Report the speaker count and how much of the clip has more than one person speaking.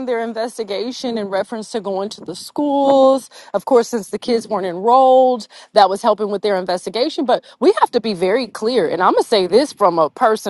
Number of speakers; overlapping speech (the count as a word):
one, no overlap